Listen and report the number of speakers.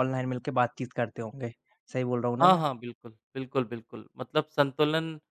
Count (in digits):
2